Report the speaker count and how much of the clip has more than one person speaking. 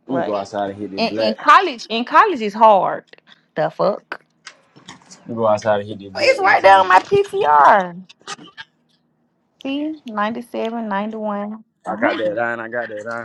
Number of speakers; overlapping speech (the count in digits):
2, about 15%